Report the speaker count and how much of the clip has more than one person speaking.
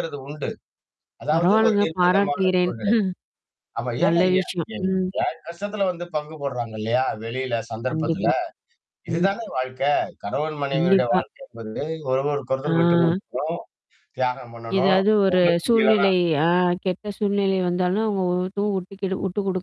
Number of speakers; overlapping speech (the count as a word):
two, about 28%